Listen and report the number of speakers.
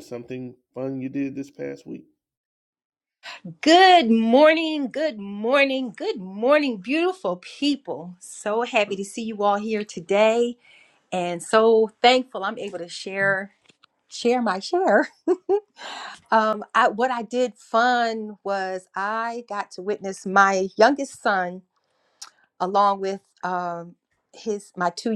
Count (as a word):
two